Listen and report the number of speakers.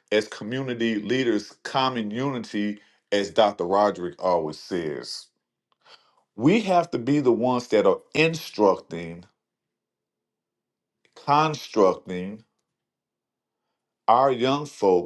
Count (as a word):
one